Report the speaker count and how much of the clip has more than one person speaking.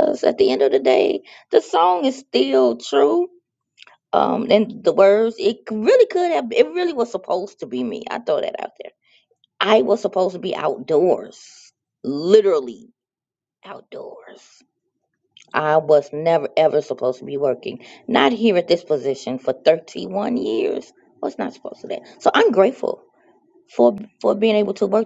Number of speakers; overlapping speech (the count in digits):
1, no overlap